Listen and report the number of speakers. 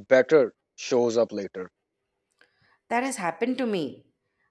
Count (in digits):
2